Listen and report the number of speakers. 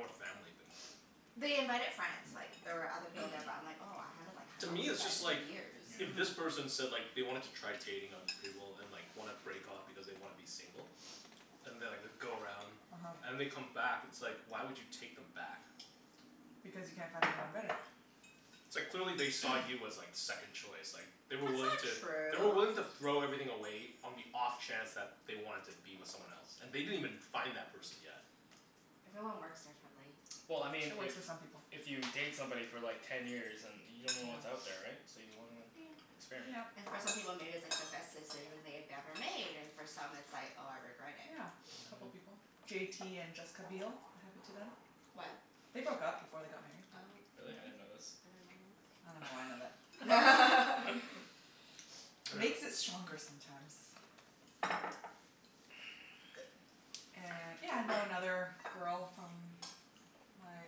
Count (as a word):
four